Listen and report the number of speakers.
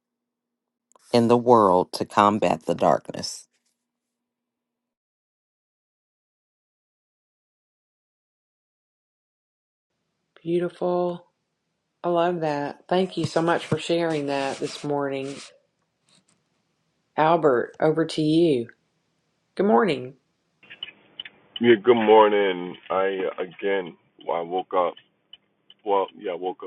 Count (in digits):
3